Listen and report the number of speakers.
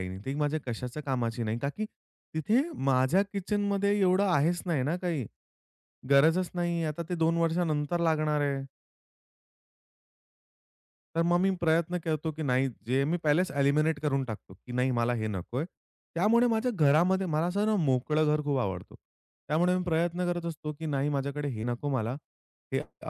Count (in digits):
1